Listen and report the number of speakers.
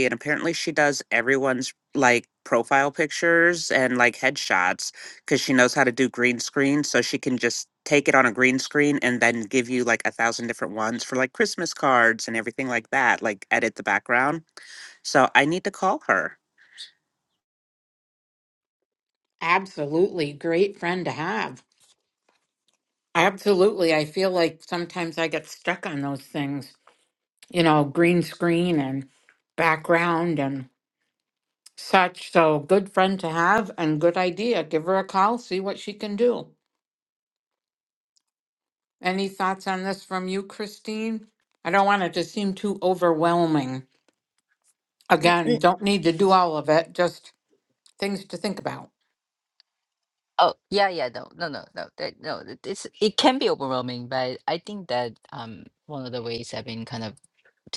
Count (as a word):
three